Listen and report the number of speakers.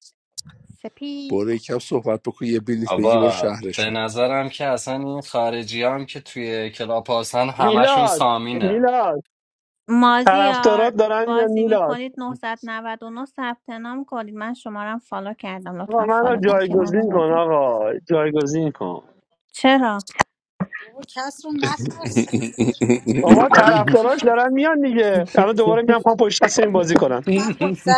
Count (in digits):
5